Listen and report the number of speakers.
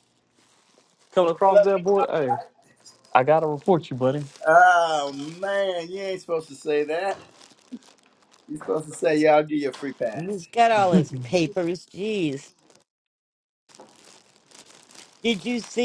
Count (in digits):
3